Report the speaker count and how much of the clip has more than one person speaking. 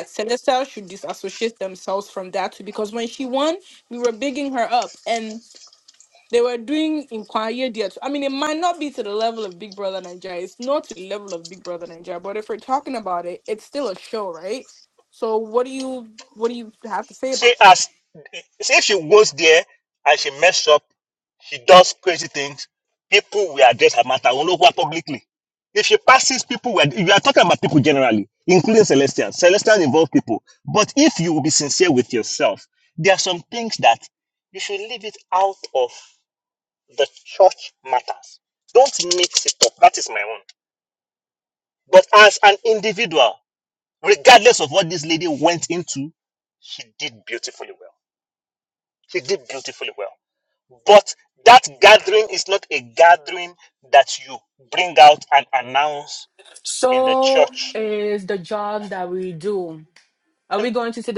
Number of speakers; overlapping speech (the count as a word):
three, about 2%